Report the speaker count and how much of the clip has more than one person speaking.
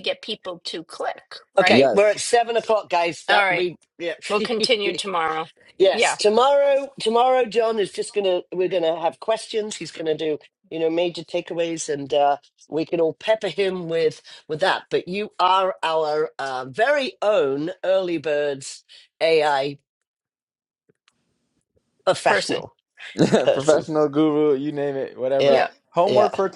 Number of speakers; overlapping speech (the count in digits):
3, about 9%